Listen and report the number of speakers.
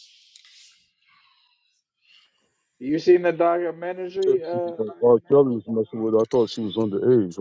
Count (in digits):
2